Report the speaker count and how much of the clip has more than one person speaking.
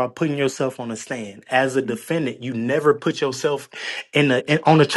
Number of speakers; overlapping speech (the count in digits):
1, no overlap